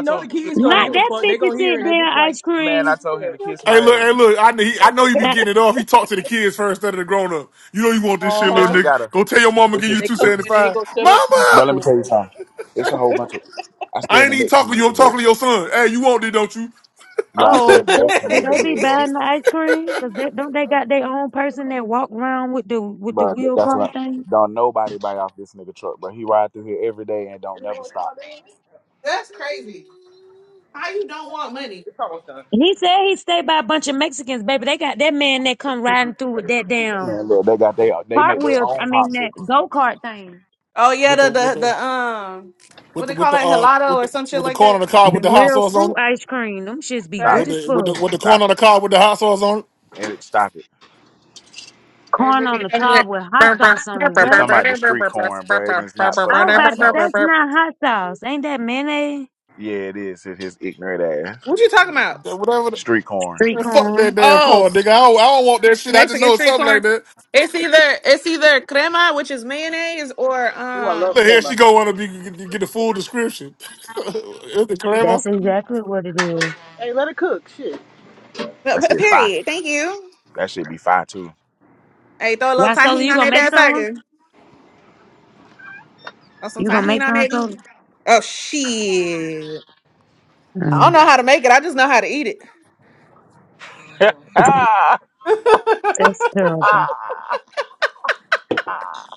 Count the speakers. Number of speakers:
5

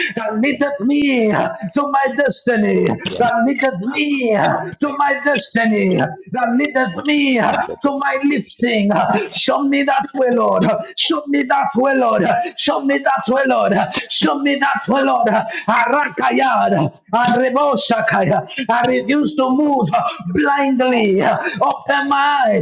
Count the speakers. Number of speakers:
1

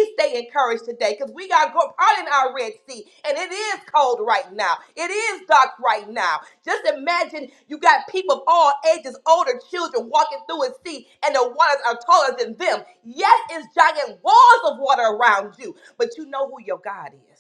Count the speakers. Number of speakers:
1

